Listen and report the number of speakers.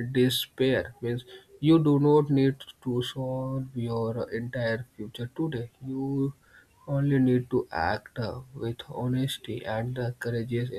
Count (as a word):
one